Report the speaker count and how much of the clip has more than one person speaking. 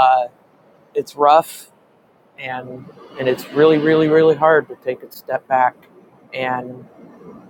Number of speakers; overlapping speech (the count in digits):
1, no overlap